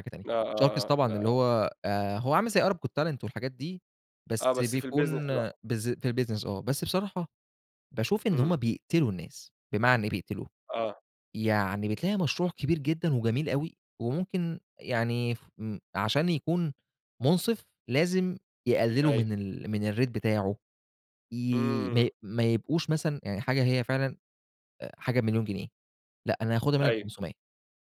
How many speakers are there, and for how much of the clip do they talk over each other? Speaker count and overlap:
two, about 10%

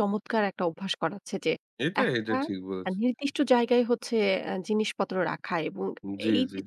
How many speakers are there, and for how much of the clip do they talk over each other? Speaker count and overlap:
two, about 11%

